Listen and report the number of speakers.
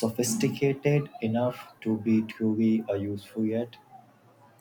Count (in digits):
1